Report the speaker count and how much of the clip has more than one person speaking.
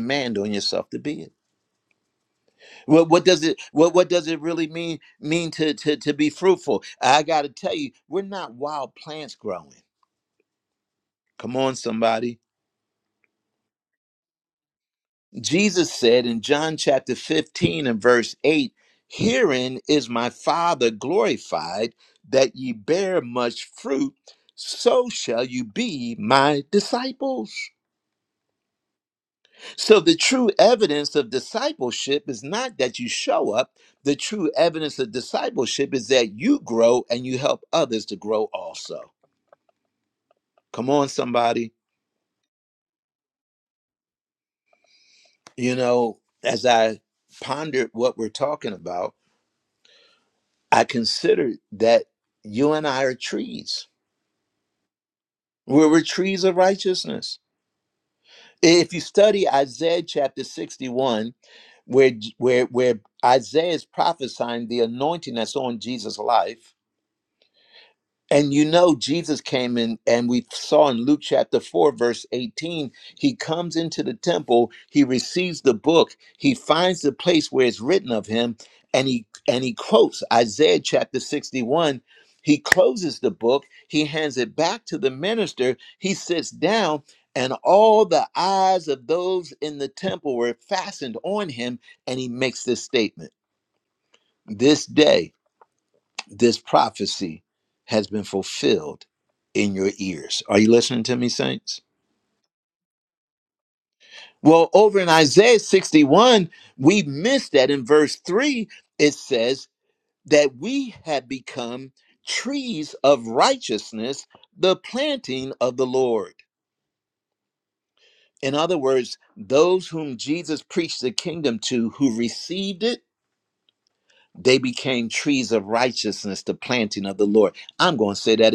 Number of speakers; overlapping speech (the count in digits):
1, no overlap